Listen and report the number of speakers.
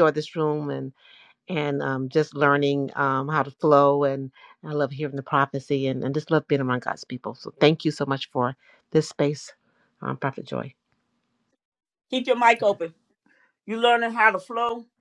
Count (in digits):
2